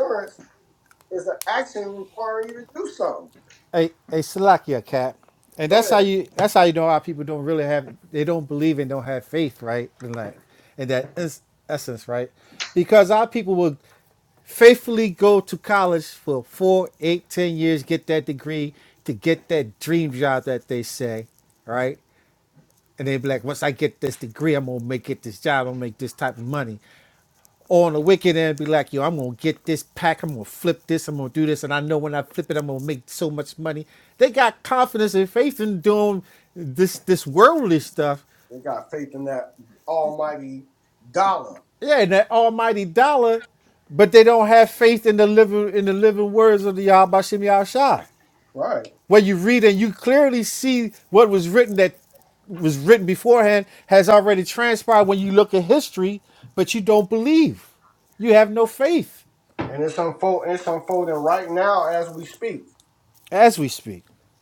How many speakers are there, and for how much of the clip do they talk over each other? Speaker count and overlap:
2, about 1%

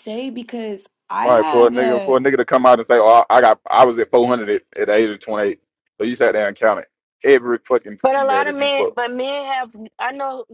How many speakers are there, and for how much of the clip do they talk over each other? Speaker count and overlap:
3, about 17%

